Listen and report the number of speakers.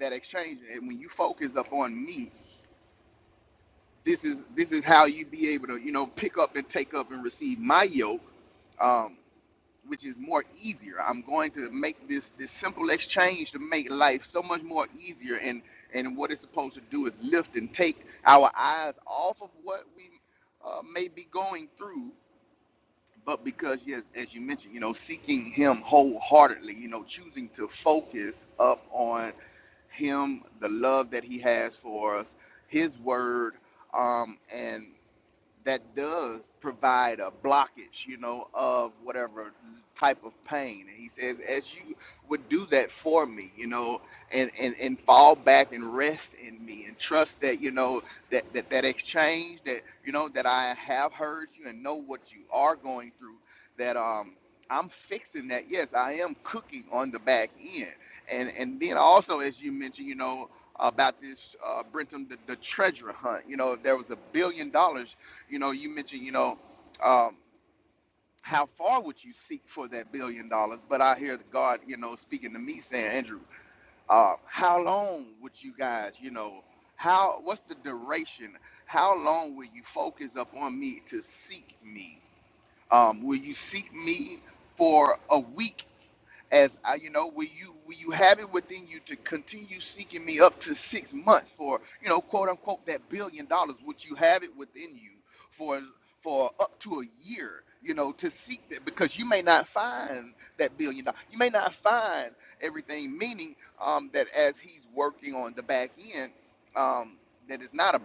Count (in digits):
1